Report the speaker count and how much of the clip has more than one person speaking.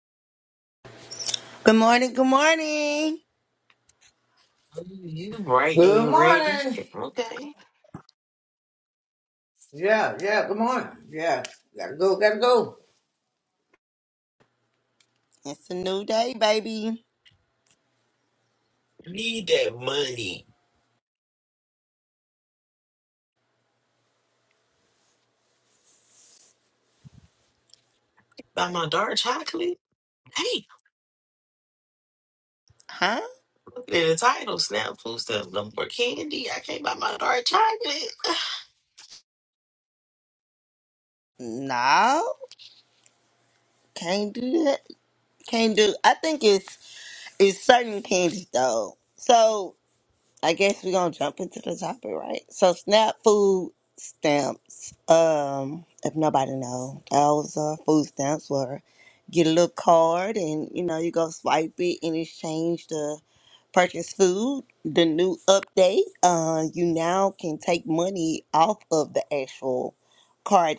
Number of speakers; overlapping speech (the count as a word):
three, about 1%